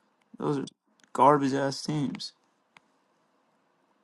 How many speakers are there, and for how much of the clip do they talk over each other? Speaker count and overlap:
1, no overlap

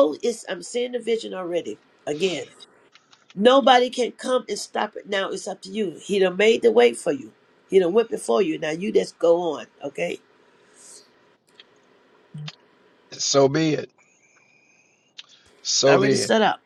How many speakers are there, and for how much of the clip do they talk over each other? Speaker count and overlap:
2, about 3%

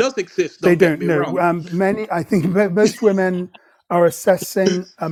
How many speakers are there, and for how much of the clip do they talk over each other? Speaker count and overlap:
2, about 15%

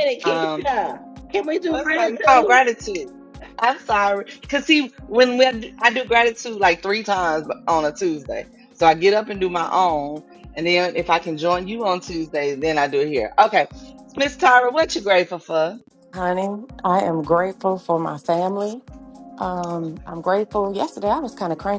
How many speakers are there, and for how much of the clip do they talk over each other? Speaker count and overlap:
3, about 7%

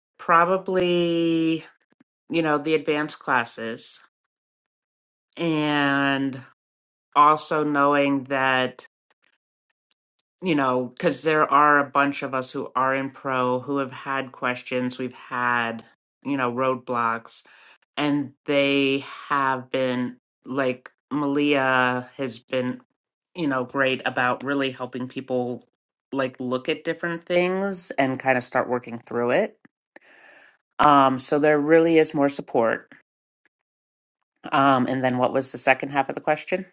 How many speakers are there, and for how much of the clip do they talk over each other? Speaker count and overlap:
1, no overlap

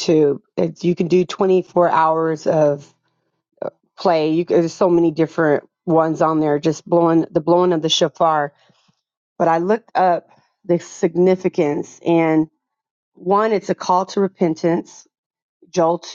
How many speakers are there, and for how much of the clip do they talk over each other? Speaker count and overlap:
1, no overlap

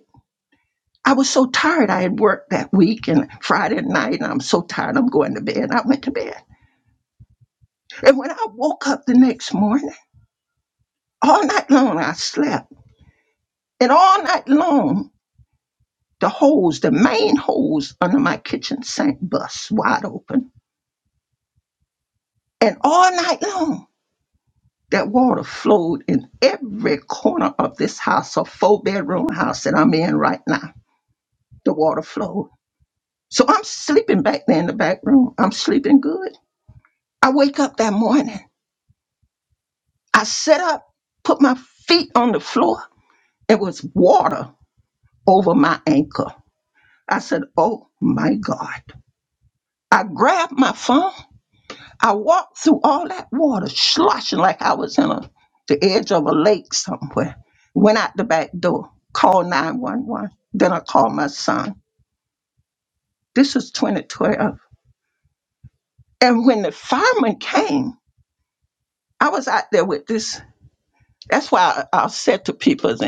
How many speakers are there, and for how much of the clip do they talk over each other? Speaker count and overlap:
1, no overlap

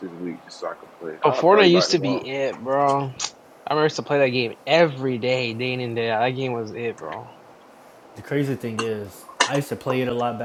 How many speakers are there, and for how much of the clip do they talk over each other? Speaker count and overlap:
3, about 10%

